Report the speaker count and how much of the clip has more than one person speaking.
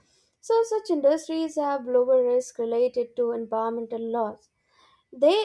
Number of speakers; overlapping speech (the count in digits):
1, no overlap